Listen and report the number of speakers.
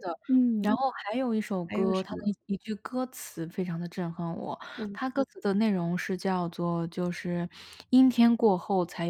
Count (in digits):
2